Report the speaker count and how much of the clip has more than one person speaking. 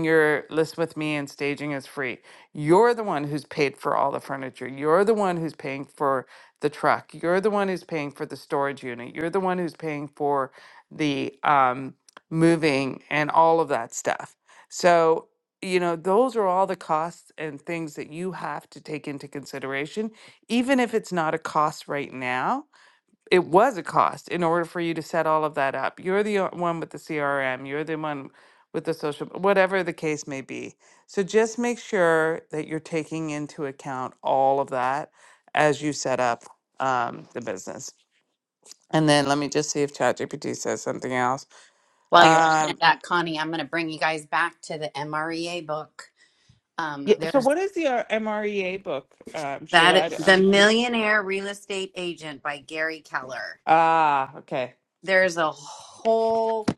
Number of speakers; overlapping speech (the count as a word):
two, about 3%